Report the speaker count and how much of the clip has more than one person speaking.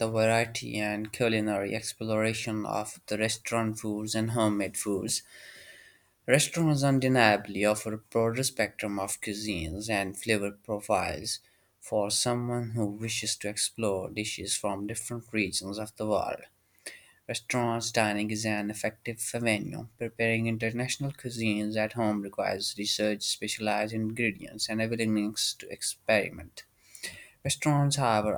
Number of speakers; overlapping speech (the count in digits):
1, no overlap